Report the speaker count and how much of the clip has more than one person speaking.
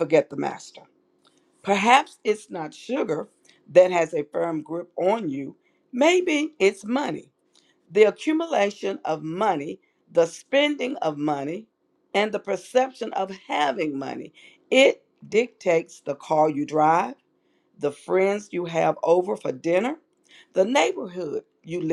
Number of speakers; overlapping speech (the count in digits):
1, no overlap